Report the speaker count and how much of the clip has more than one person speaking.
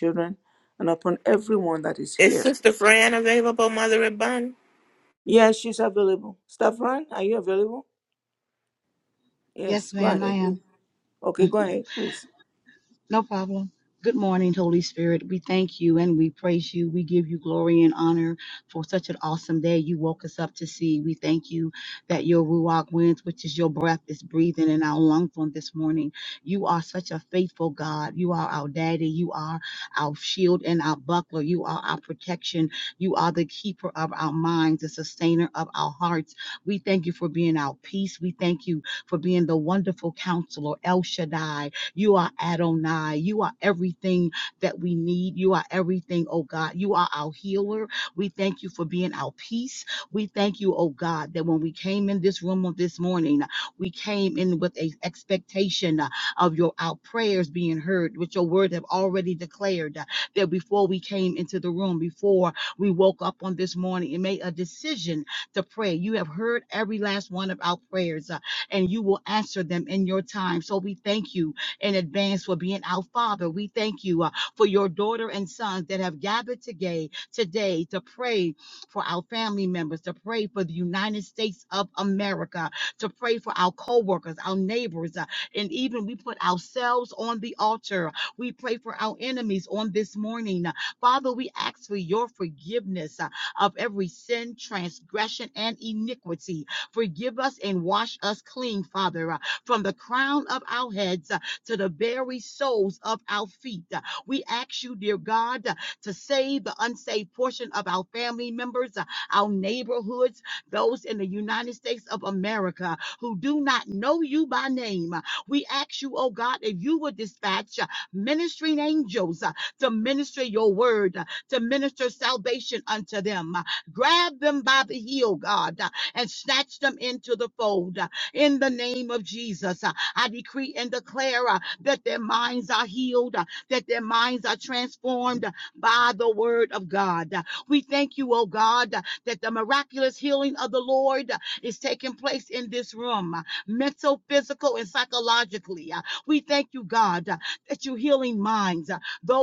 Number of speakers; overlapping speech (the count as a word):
three, about 1%